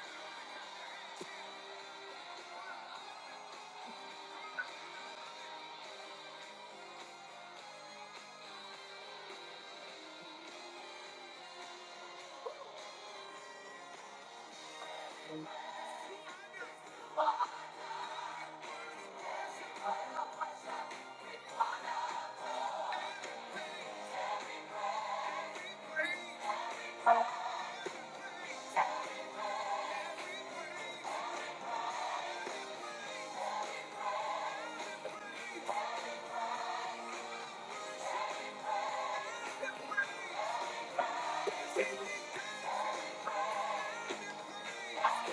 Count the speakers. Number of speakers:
0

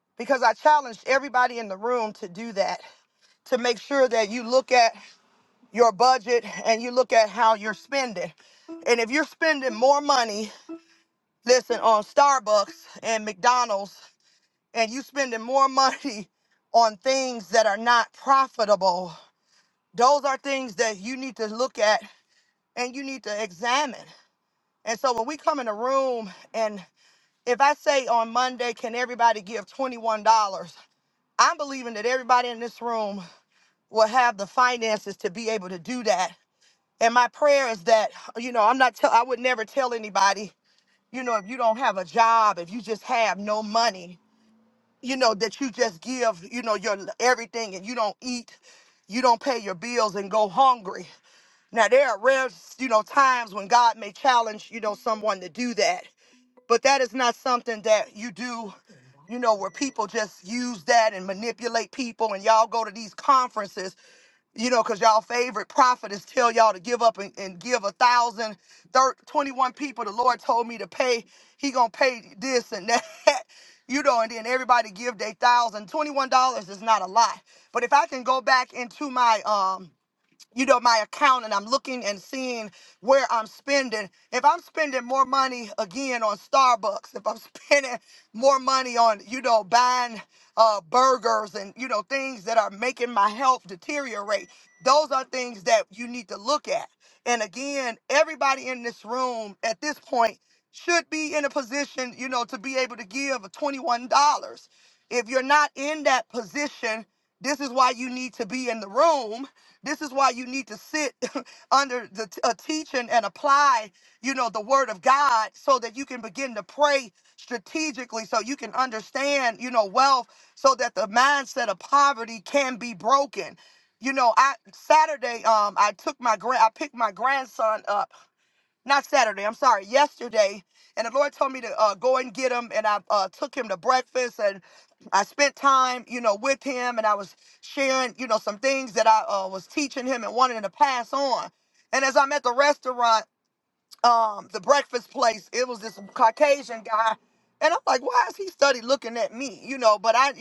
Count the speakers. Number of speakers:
1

